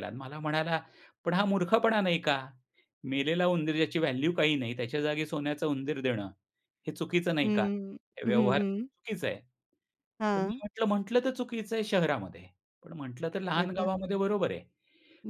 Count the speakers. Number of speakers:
2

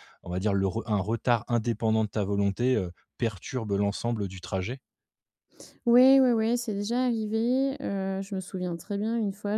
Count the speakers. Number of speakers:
2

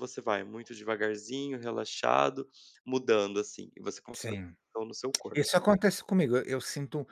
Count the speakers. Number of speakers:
2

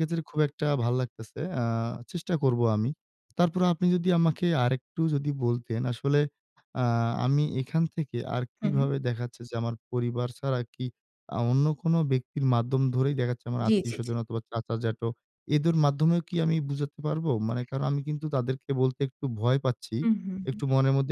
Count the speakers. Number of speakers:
2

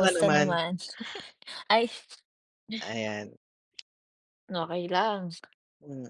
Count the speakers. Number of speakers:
2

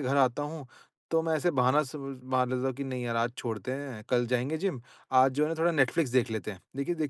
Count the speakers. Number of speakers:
1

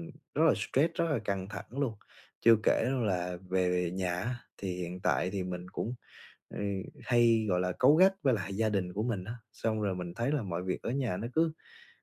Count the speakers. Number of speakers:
1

